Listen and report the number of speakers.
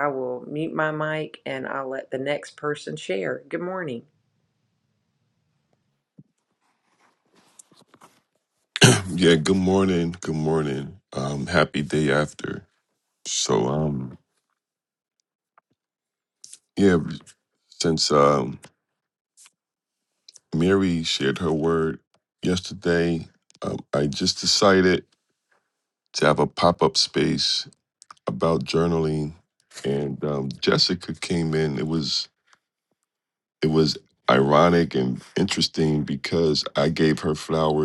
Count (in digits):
2